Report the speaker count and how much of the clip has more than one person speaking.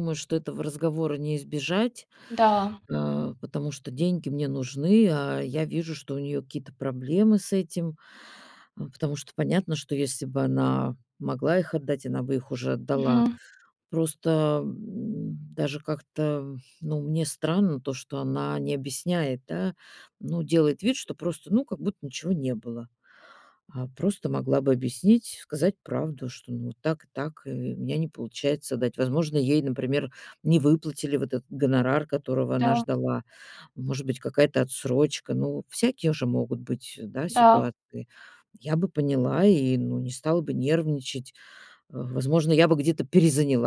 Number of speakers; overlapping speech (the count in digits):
2, about 2%